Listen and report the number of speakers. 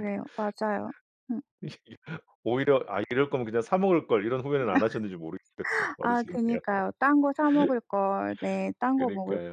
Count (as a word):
two